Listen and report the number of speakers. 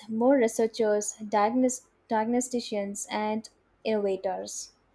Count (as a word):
one